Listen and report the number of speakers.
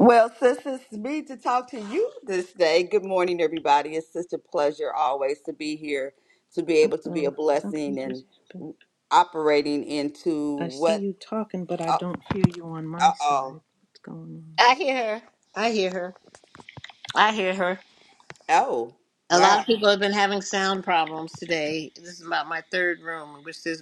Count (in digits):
3